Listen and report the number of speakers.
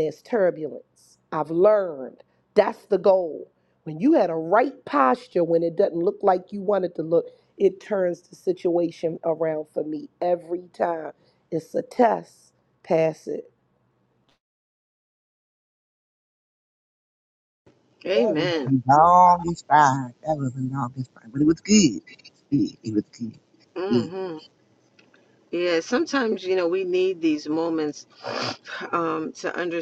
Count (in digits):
3